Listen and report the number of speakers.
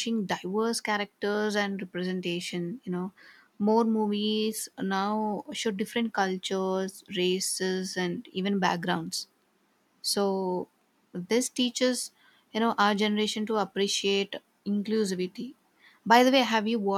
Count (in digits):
1